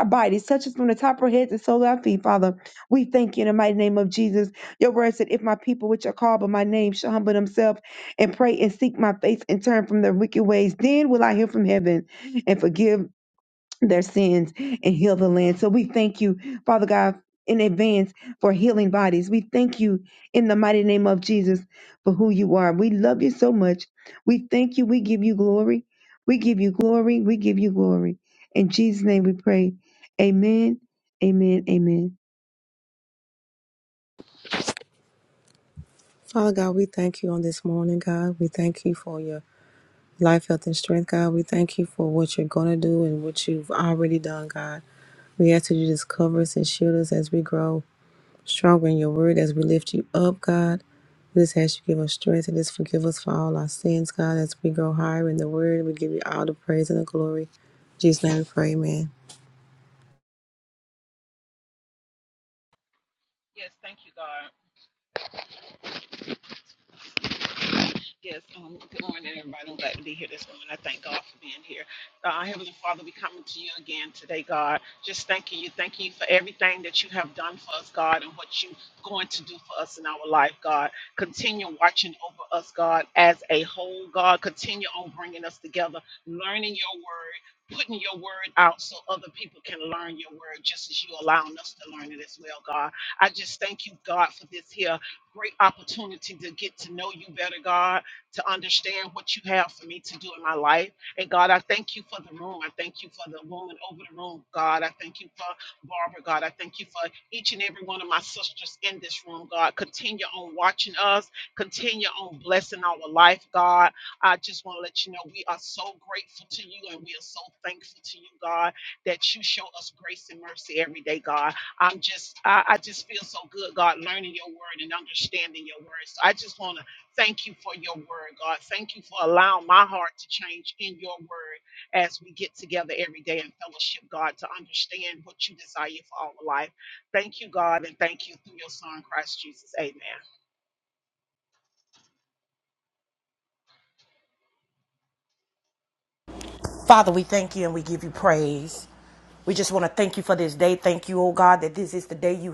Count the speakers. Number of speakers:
four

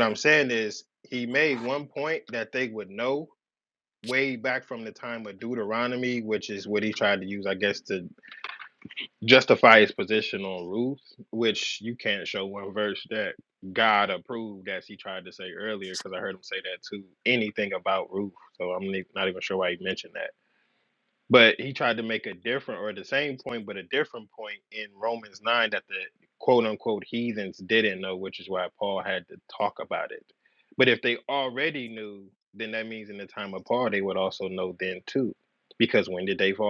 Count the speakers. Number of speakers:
one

